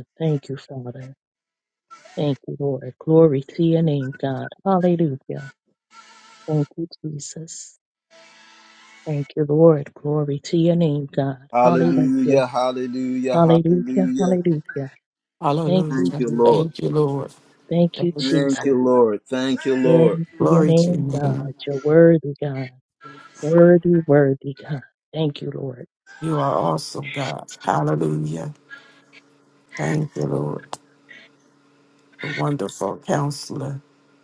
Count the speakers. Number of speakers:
3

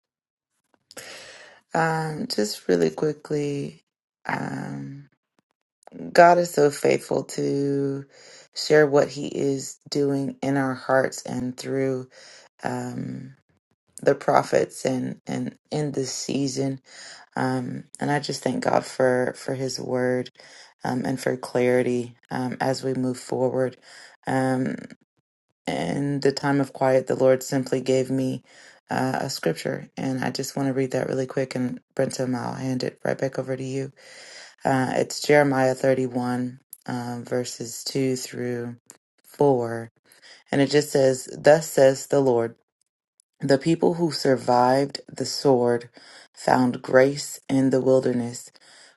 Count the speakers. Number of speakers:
1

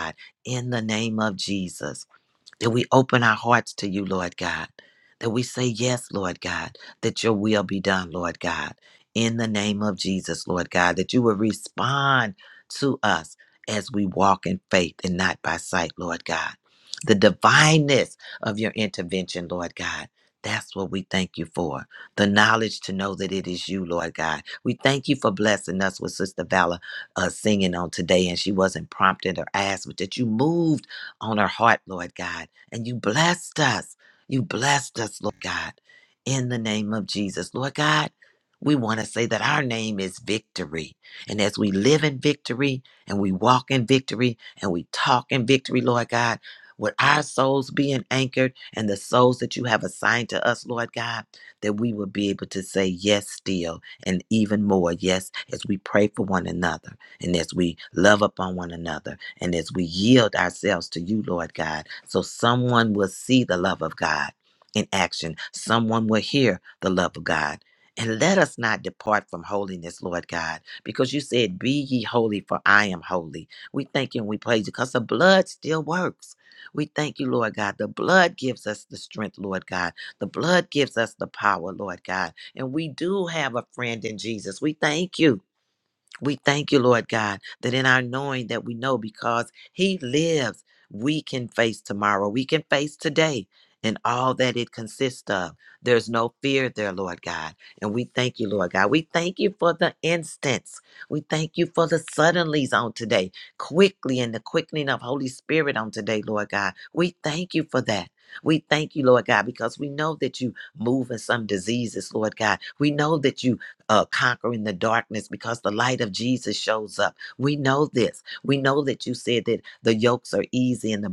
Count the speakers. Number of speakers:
1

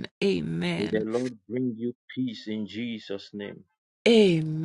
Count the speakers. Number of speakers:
2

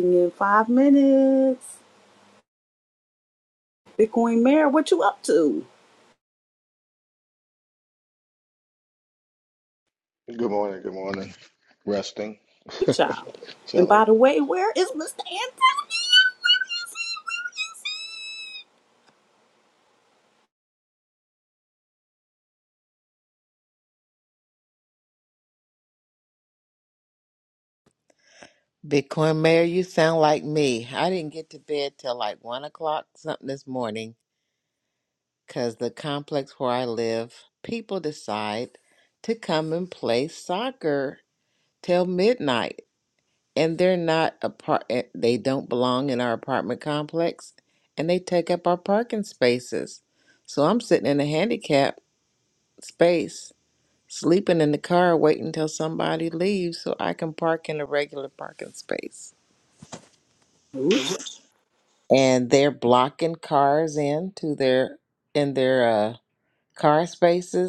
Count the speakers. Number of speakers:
3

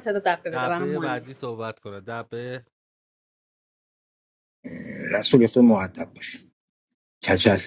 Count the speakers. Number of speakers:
3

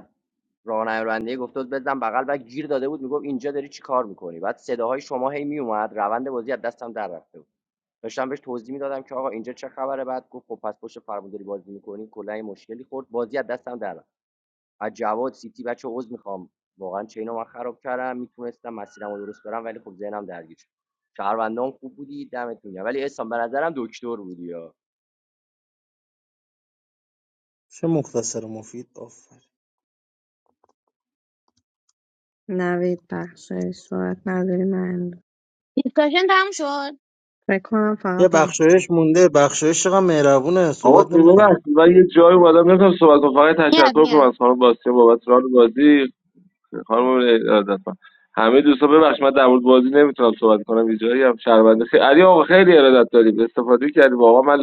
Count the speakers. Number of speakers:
5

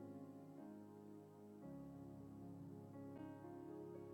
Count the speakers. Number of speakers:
0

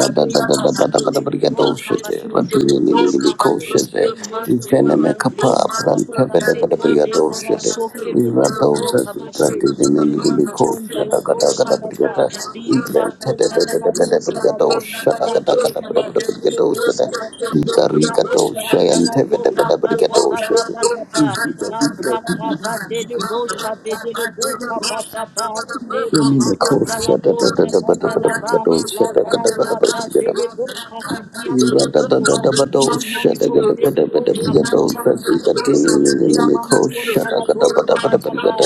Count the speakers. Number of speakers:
2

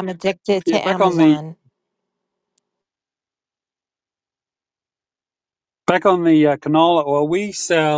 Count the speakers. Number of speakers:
2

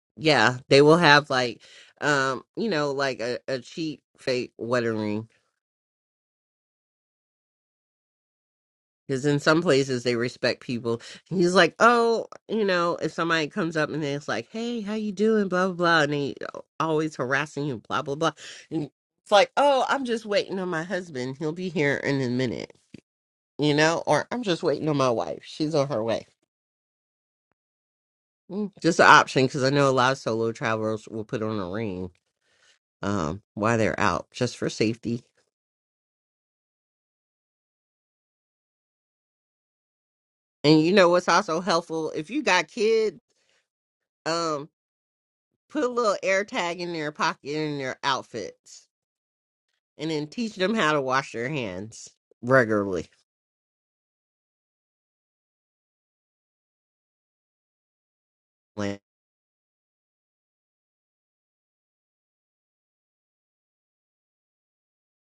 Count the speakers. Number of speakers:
1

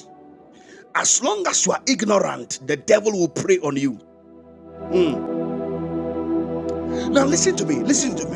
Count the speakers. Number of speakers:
1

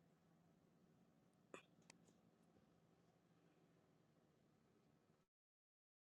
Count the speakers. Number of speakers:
0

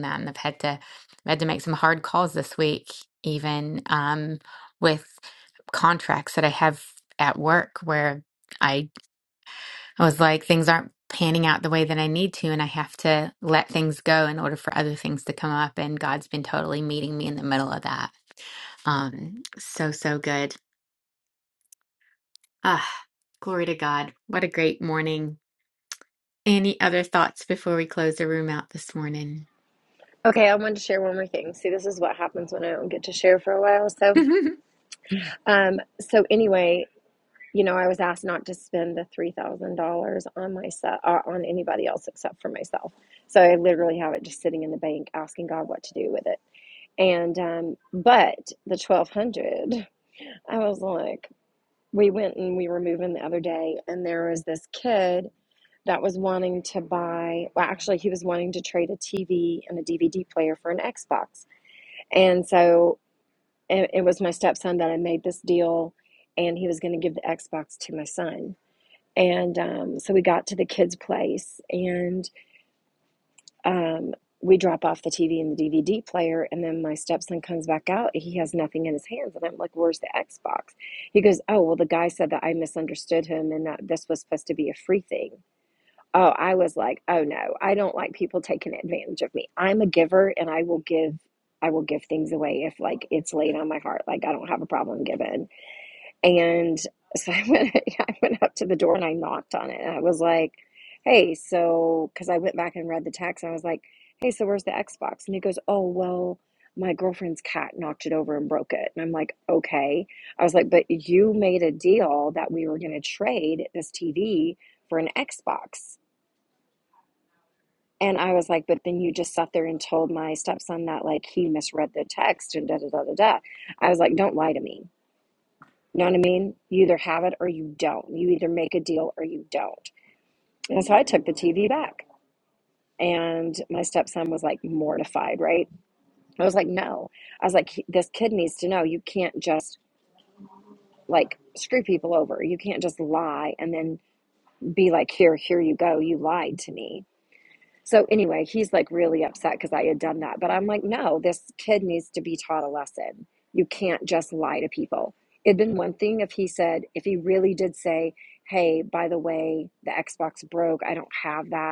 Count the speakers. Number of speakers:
2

